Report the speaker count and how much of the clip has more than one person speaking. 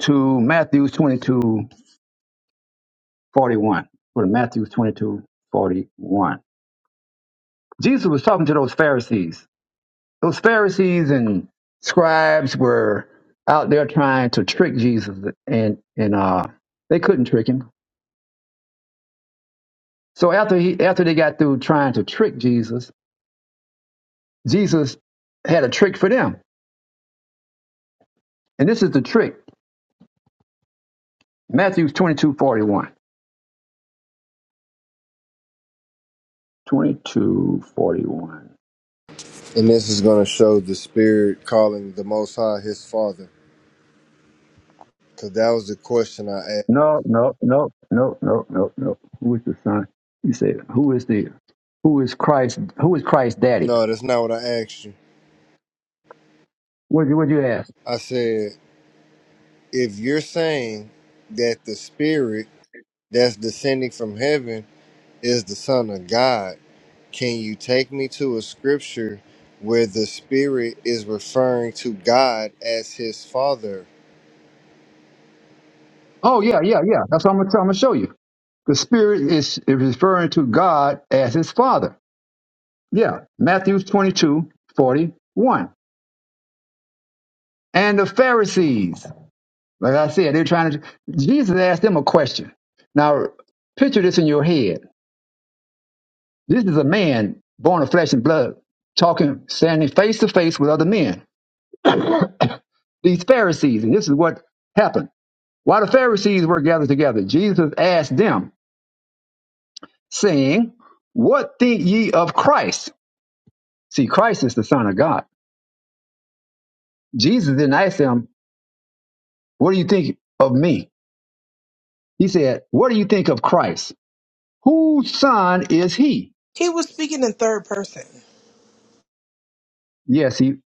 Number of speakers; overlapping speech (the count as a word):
three, under 1%